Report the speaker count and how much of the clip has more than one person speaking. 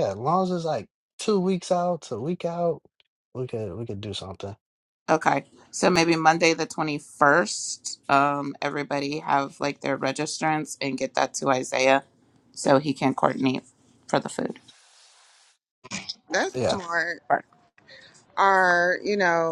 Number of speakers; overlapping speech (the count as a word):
three, about 1%